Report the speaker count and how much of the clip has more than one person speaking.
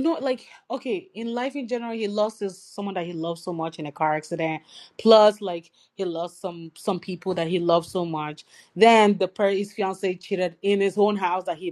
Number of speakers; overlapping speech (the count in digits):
1, no overlap